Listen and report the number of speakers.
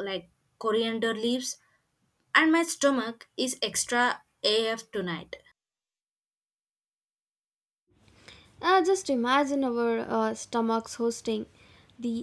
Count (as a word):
two